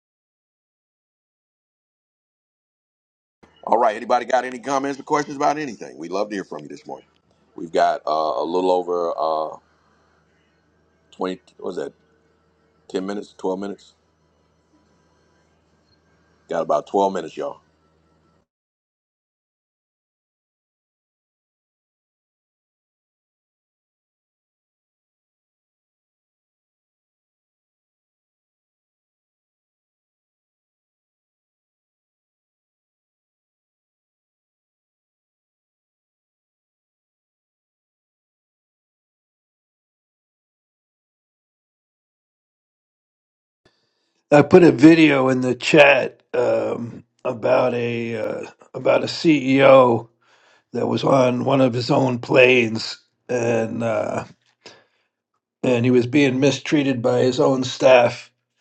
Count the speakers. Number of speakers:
two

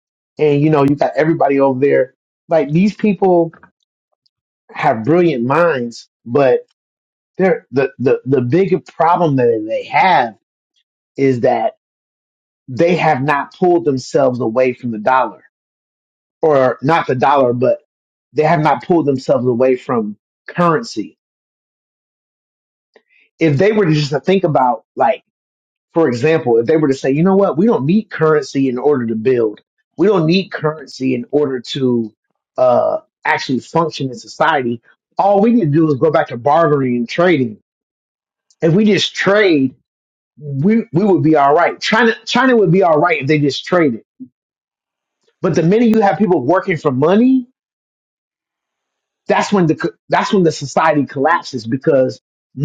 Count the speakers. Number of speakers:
one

